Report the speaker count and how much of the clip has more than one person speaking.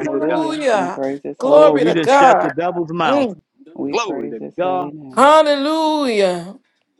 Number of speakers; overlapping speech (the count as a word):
three, about 43%